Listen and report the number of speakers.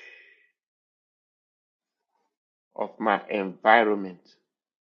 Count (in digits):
1